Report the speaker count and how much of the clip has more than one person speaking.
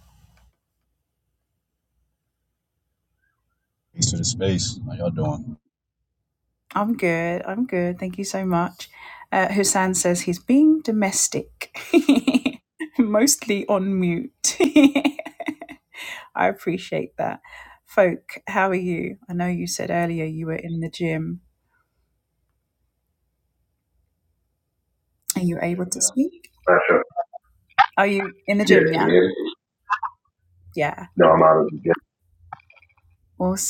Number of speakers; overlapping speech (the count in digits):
3, about 1%